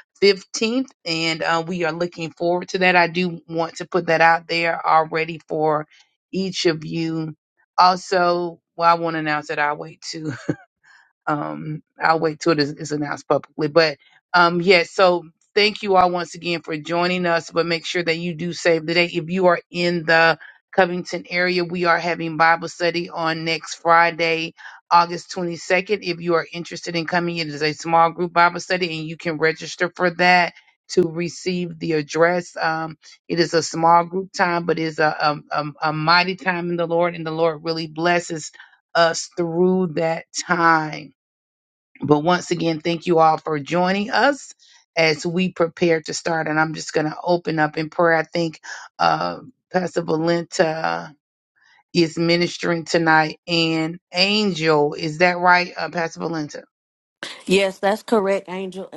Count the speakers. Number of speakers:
2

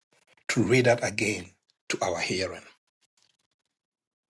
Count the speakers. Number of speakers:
1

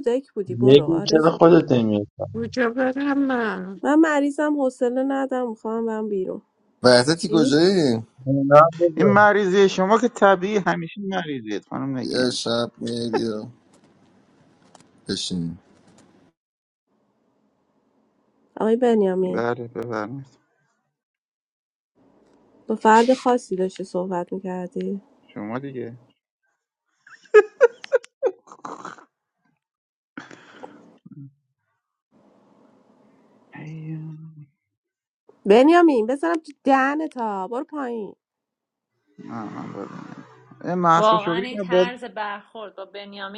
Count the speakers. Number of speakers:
6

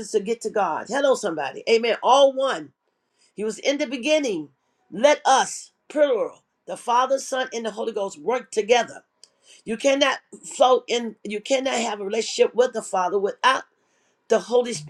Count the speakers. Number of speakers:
1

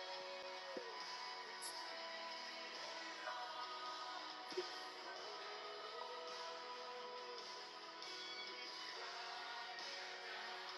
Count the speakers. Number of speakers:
0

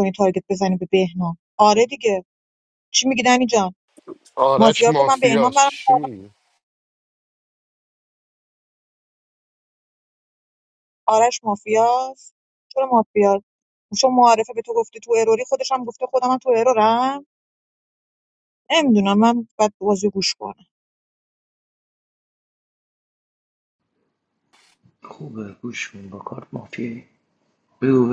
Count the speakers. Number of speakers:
3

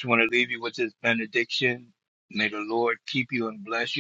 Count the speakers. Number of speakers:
1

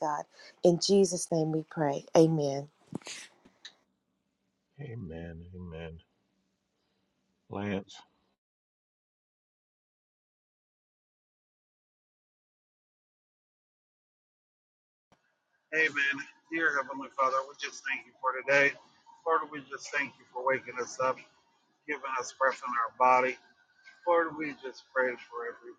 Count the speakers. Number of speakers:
3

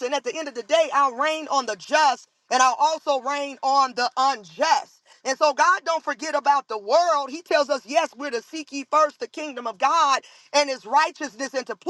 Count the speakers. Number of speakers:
1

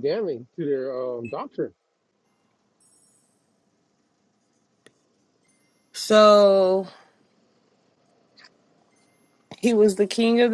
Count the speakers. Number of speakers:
2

